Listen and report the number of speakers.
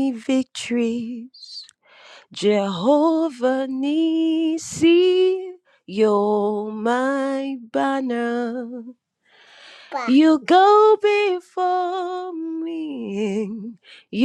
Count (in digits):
1